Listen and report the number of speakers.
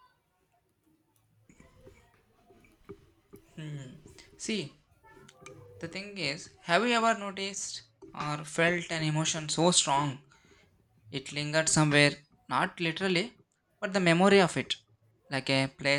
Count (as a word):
one